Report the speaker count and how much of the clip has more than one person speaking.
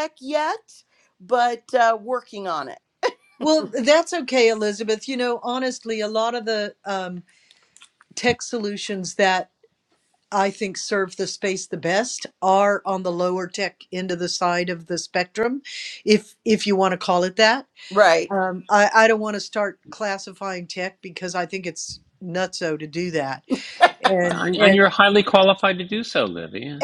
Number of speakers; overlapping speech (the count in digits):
3, about 2%